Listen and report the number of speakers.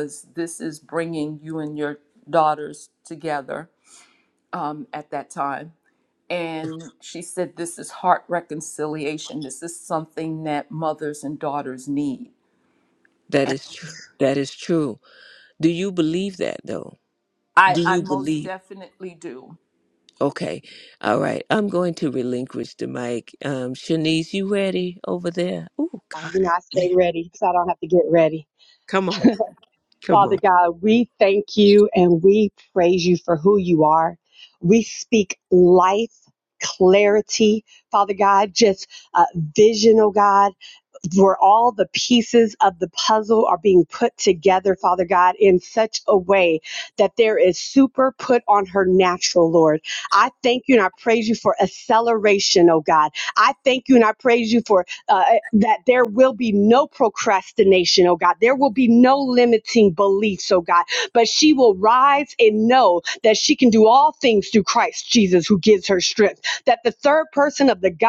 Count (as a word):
three